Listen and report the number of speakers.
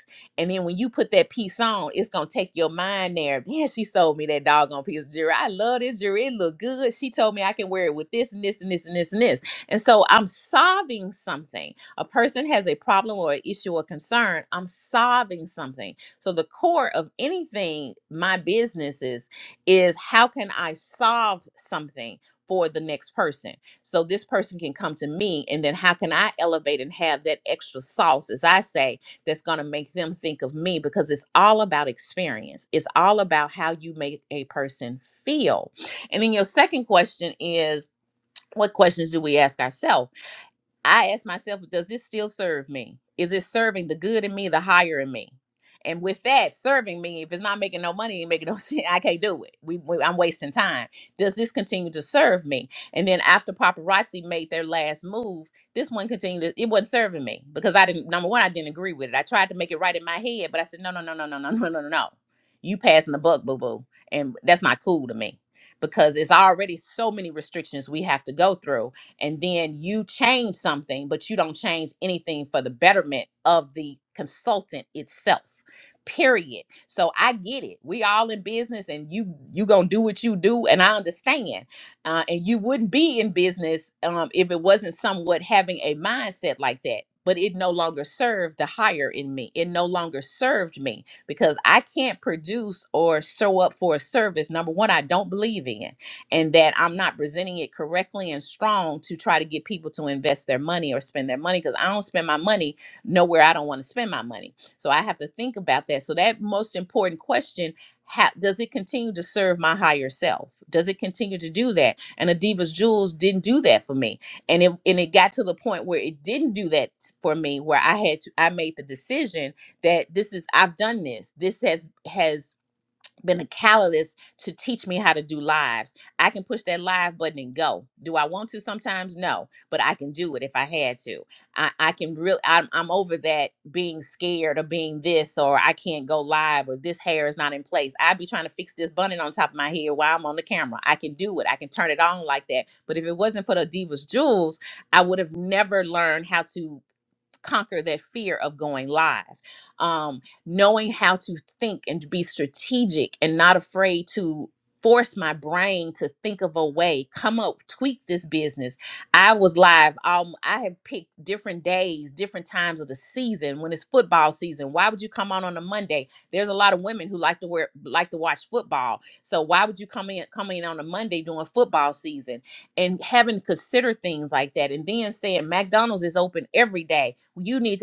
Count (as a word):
one